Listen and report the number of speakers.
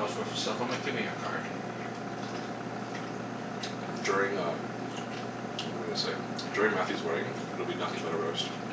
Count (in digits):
2